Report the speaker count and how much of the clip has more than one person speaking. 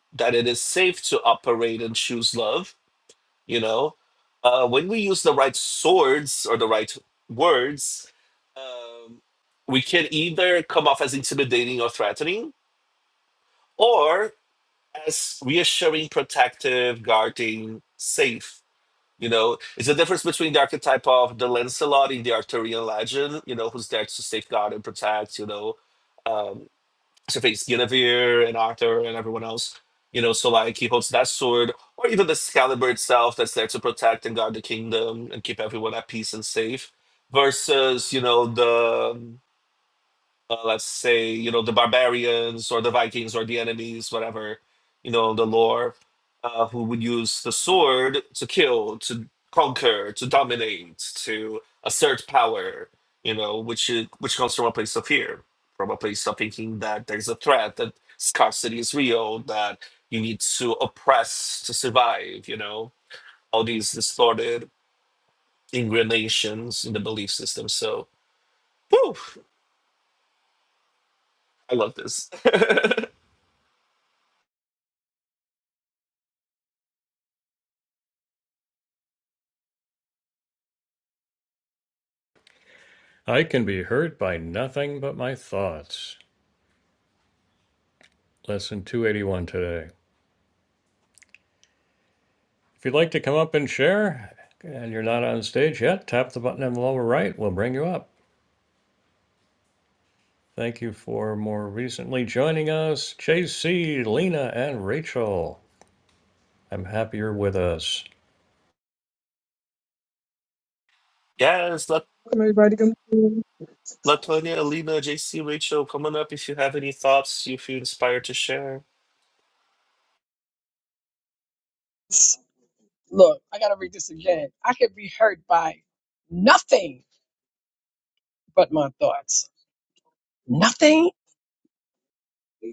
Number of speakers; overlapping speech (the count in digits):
3, no overlap